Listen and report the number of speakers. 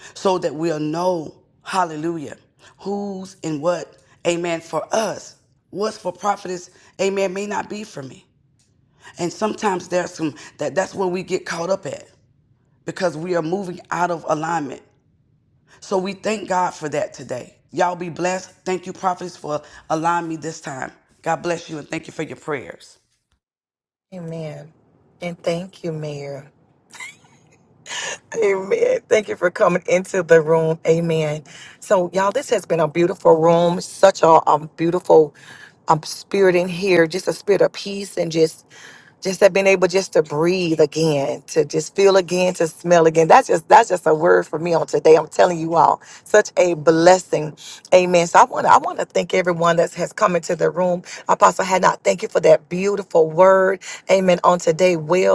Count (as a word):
two